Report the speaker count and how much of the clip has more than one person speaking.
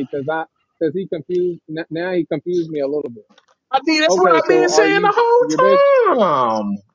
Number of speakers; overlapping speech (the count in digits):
2, about 25%